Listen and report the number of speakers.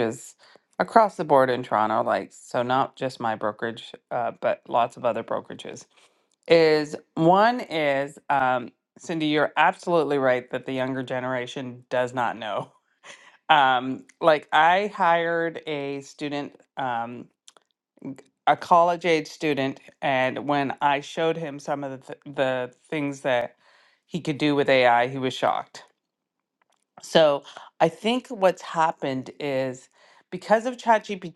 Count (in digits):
1